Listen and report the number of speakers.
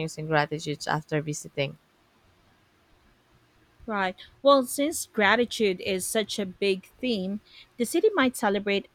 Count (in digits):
2